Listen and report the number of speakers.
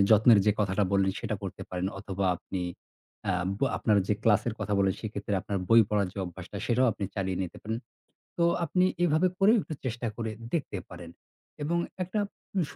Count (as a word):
one